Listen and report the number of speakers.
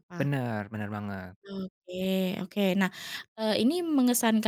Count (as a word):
two